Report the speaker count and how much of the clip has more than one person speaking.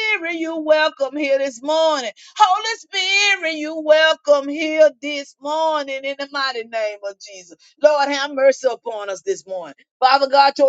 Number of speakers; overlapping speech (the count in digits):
1, no overlap